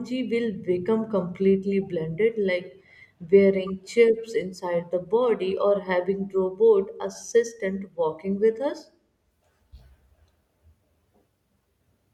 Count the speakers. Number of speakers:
1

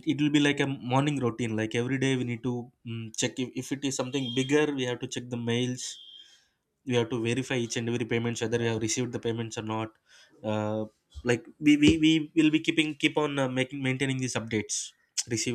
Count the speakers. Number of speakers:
1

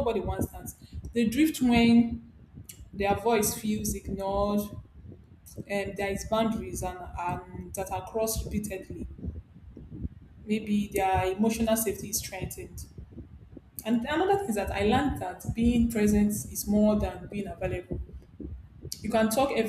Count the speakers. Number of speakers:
1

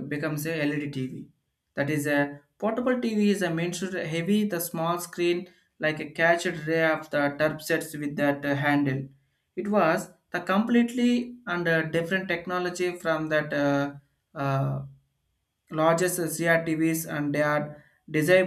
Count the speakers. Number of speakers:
1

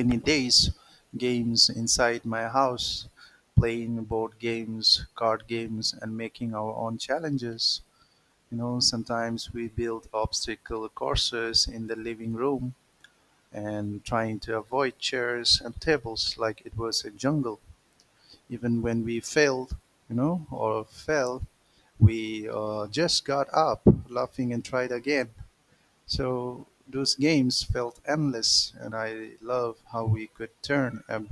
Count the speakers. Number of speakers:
1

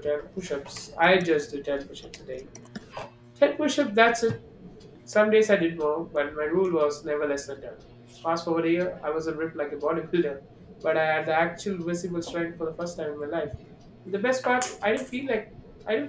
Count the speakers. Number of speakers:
1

